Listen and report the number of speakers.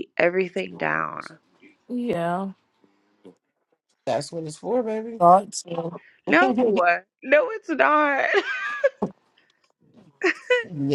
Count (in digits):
3